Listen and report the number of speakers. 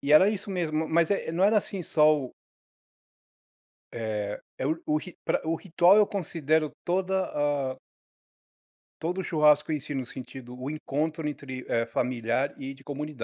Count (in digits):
1